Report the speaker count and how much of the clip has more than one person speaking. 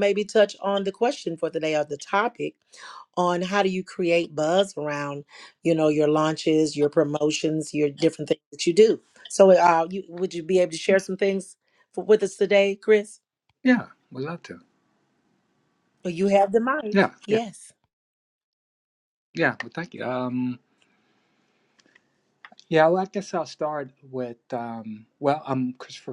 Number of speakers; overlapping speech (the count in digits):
2, under 1%